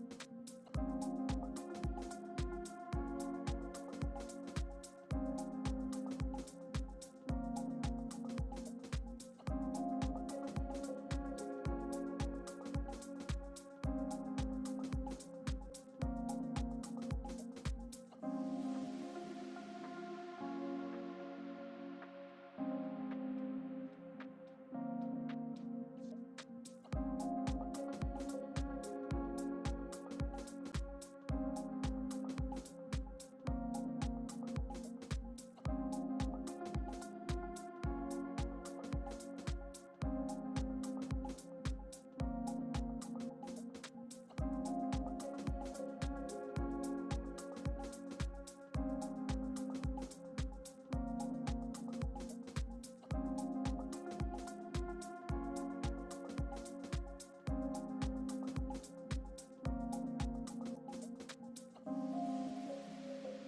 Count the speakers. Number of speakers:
0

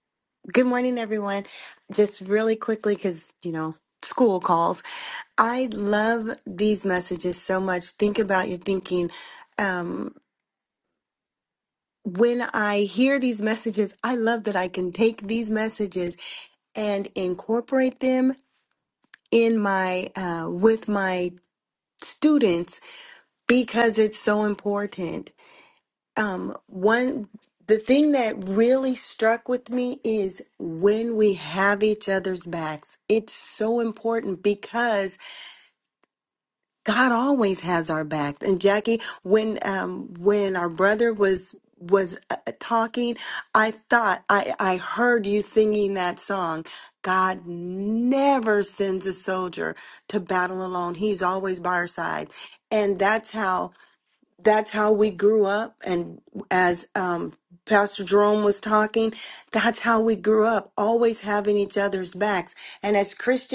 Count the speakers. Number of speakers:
1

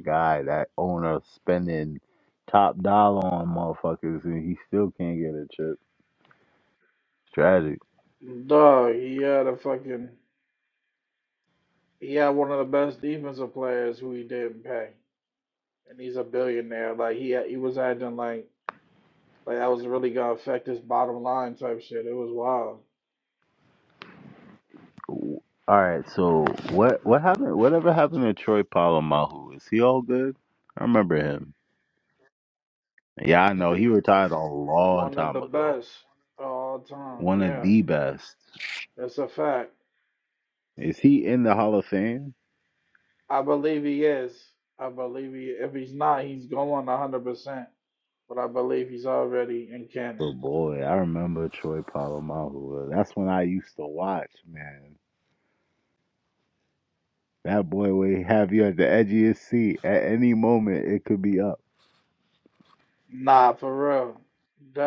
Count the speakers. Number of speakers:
2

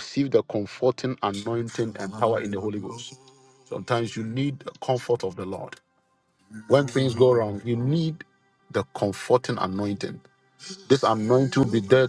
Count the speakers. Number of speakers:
1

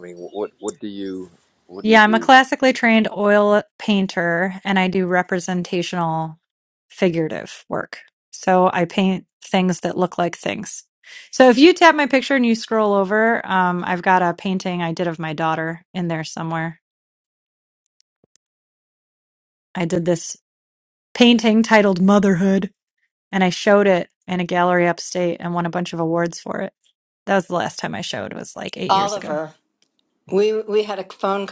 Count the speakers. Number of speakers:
3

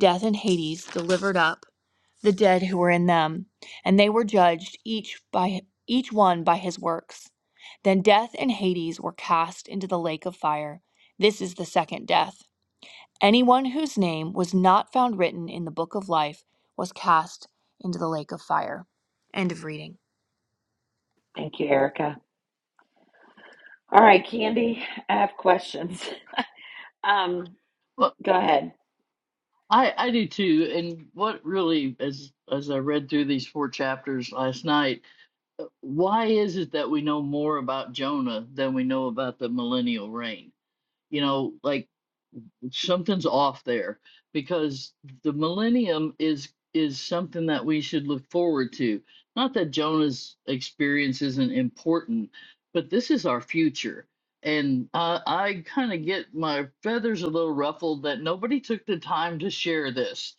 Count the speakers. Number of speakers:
3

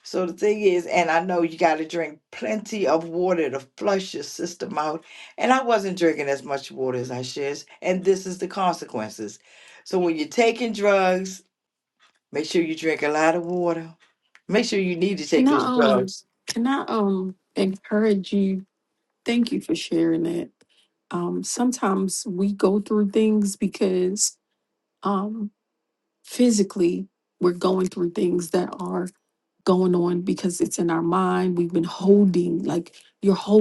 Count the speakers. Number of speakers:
2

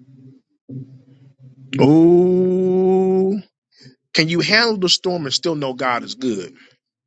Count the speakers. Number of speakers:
1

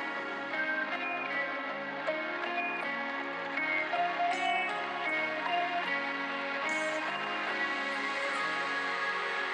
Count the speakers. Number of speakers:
0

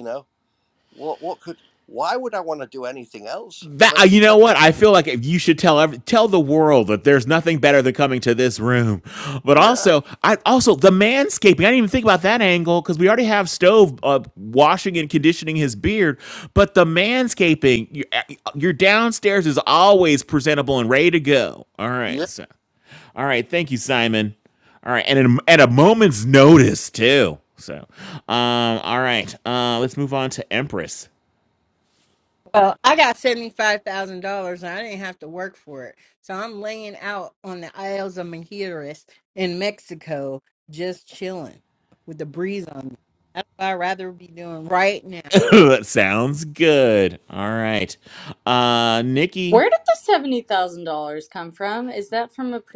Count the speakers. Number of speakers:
4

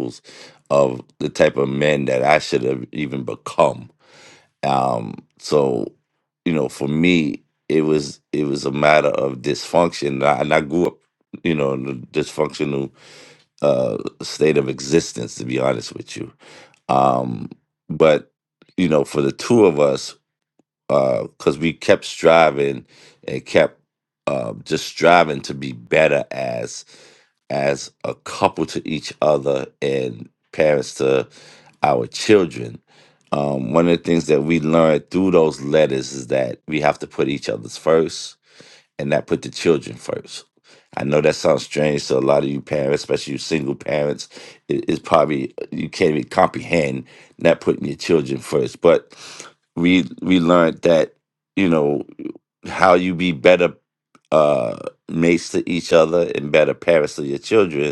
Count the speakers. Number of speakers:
1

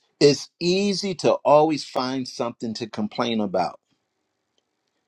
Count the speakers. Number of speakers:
1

